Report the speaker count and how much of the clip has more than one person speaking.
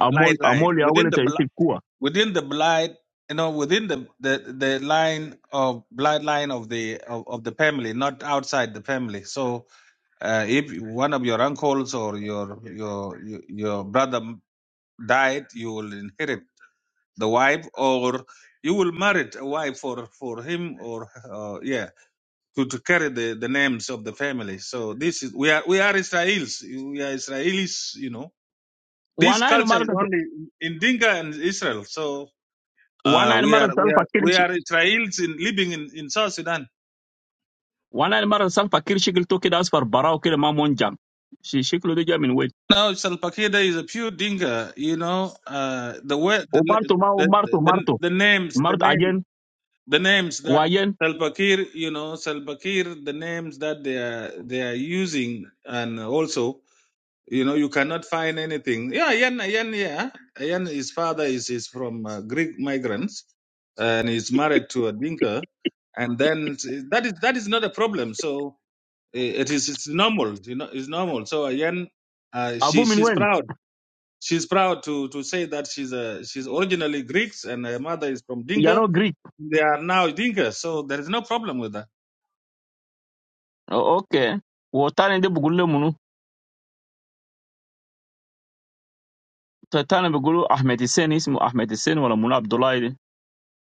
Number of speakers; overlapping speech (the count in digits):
2, about 7%